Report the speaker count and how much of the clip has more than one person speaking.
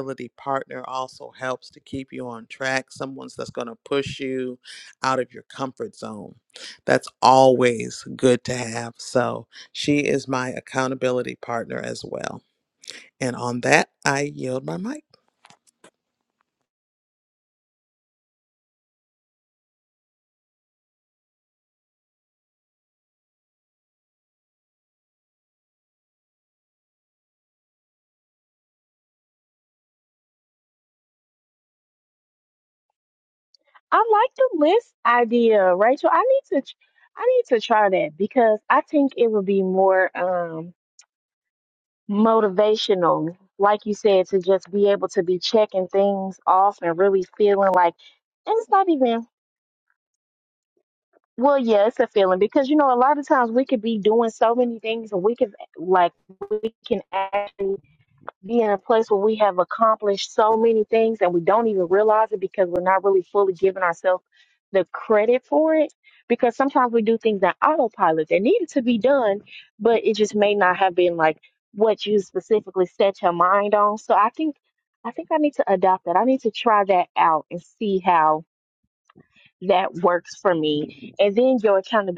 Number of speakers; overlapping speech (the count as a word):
two, no overlap